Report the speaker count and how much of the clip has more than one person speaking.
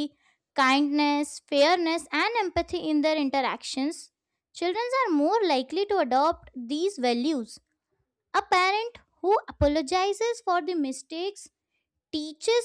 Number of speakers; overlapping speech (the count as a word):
one, no overlap